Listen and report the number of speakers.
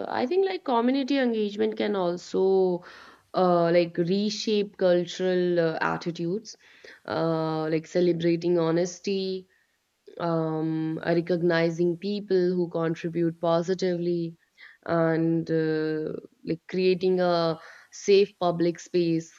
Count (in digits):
1